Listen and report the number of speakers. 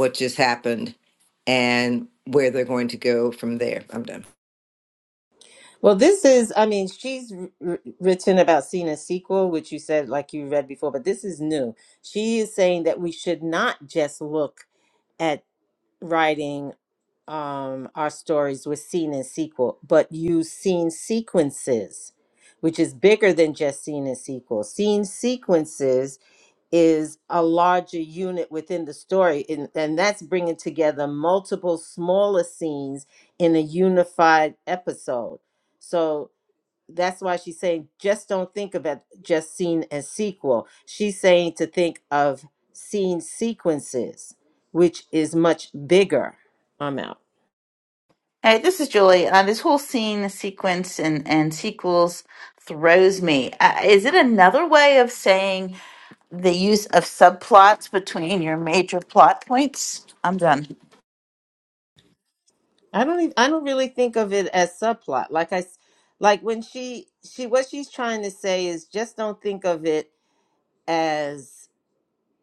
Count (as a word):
three